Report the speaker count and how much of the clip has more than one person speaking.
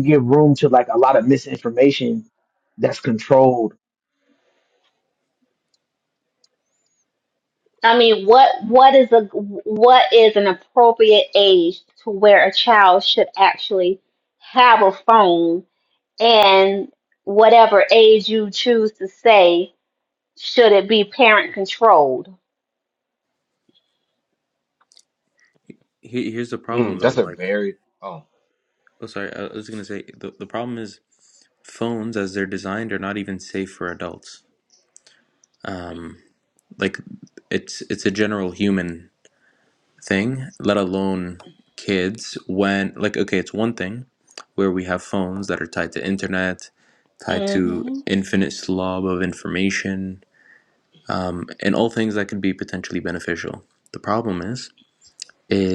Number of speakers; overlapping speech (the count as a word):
four, about 3%